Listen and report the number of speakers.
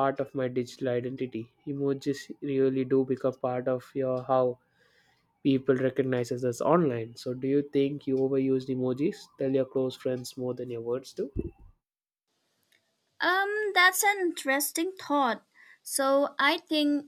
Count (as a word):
two